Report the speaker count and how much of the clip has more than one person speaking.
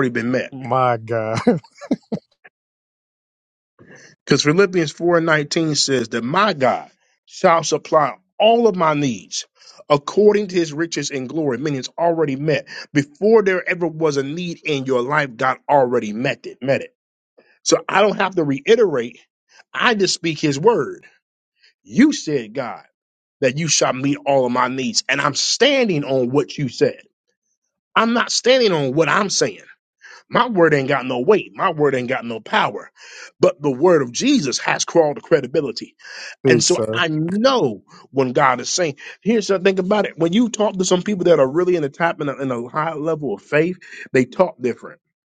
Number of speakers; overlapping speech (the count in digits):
2, about 1%